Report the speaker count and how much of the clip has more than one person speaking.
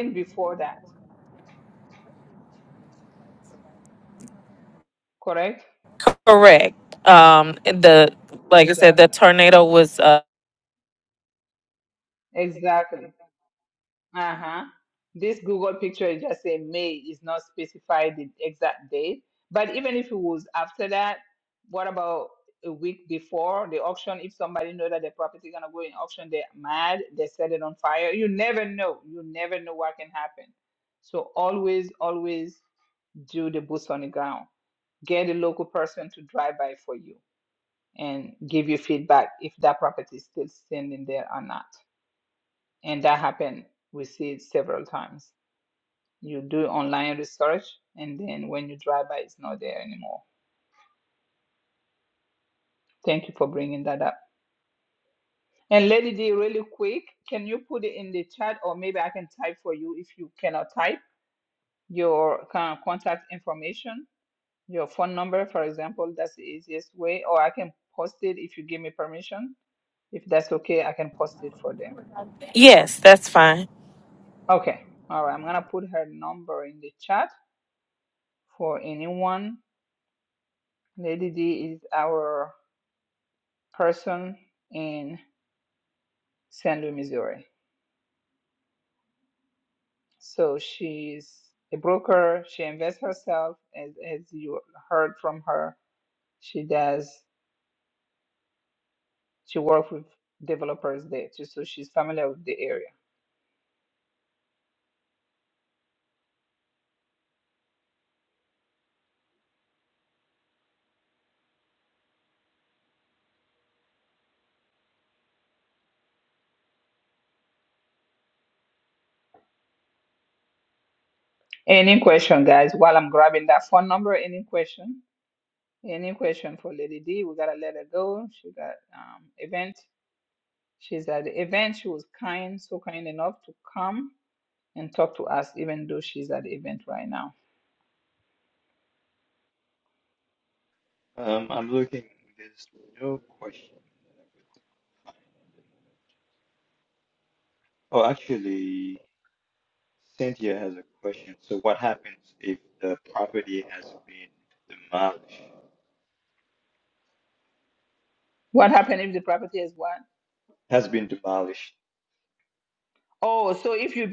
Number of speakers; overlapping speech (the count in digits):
3, under 1%